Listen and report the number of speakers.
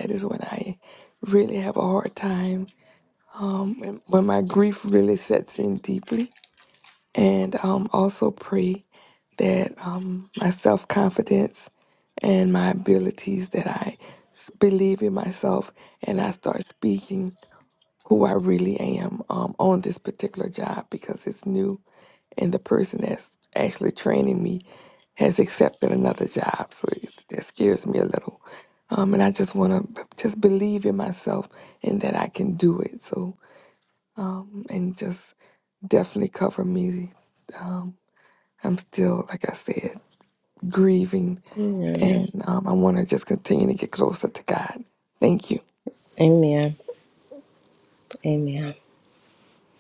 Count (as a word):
two